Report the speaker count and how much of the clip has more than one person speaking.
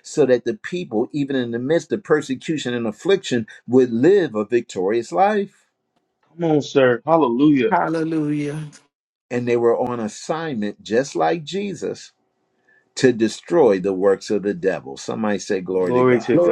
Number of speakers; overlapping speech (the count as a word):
three, about 4%